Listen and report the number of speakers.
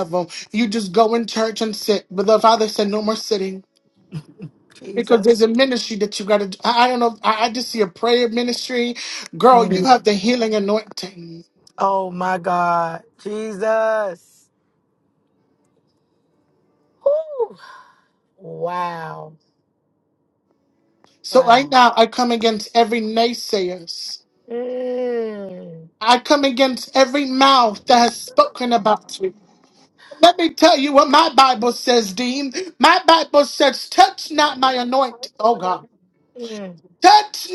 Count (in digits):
2